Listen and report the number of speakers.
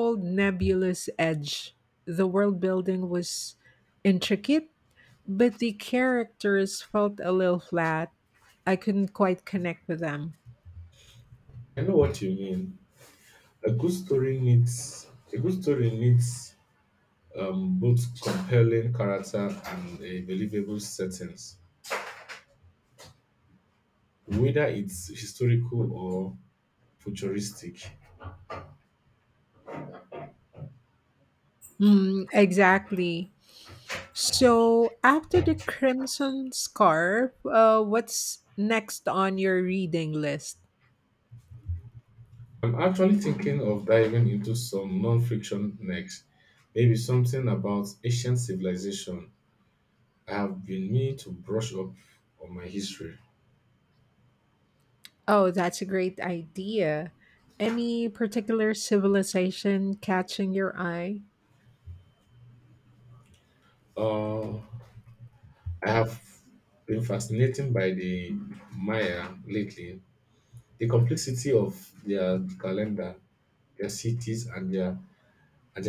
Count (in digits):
2